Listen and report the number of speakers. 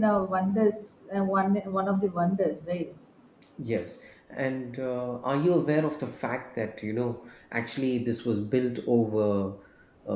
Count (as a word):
two